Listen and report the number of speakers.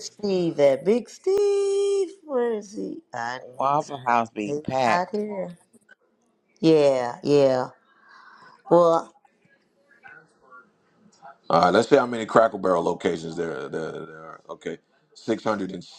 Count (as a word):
three